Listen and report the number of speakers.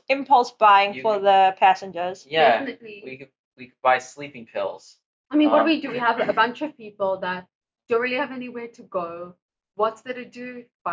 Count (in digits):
3